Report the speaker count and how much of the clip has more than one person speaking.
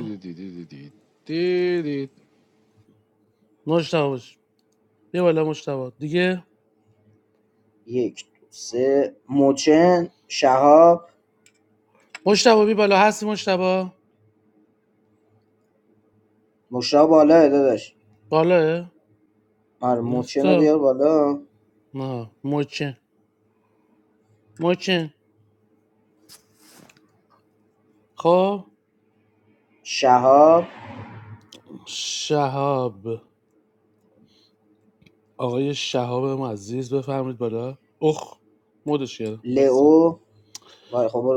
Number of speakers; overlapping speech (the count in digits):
3, about 3%